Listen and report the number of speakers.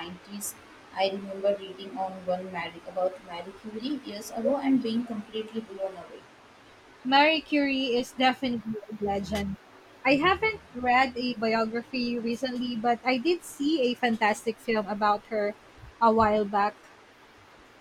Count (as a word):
two